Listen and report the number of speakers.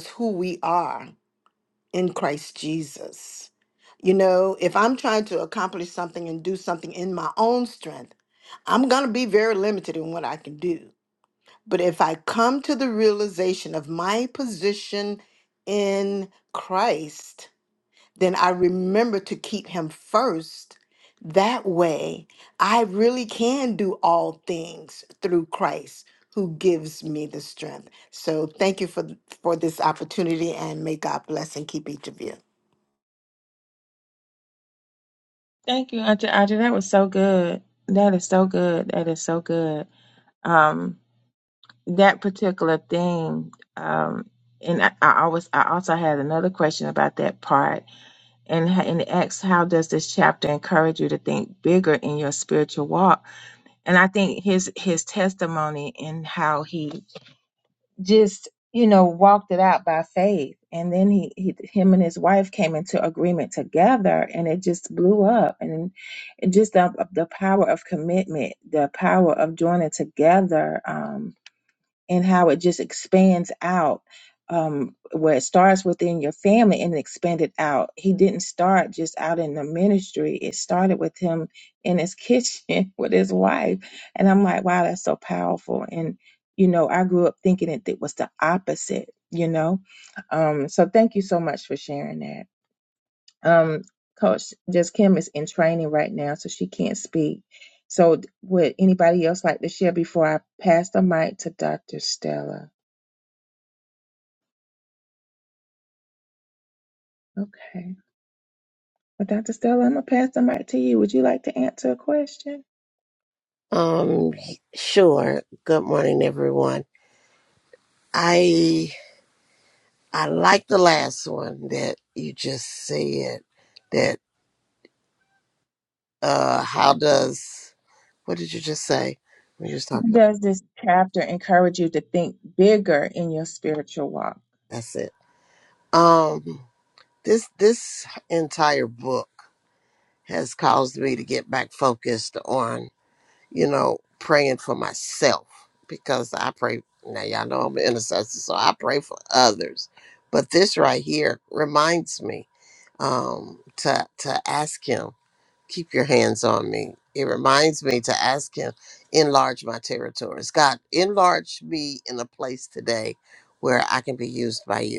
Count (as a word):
three